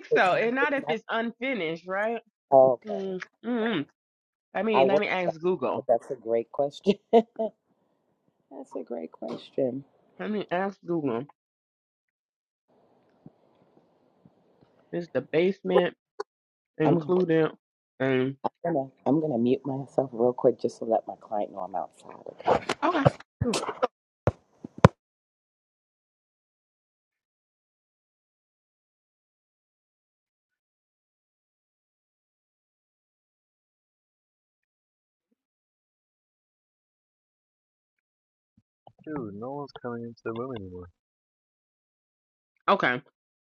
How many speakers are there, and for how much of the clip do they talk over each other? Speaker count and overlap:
three, about 2%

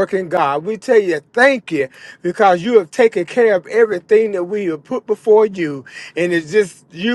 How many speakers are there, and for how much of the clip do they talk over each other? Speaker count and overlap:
one, no overlap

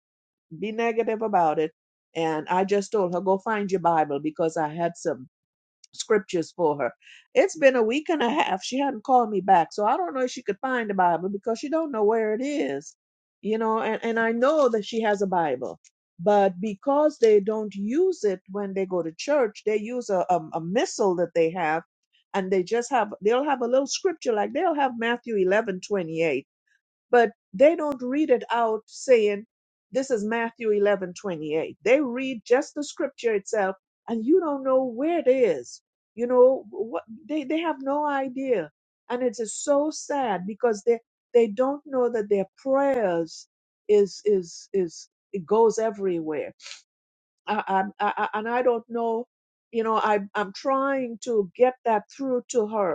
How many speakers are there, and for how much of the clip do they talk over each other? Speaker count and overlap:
one, no overlap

